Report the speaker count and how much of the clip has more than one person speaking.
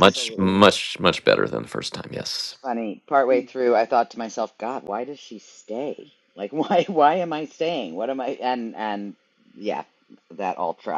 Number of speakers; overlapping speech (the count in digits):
2, about 5%